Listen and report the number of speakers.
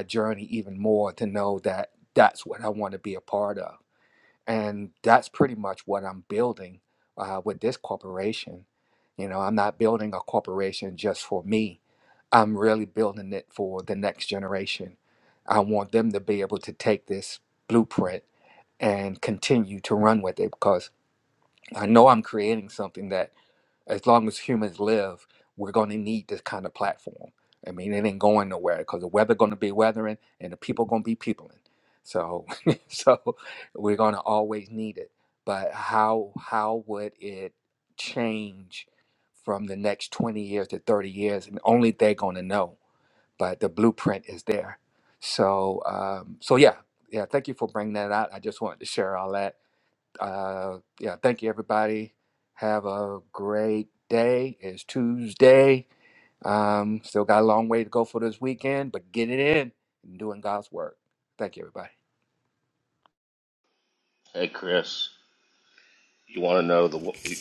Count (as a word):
two